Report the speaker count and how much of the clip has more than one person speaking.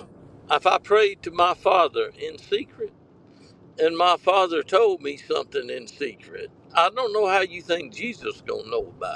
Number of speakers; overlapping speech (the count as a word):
one, no overlap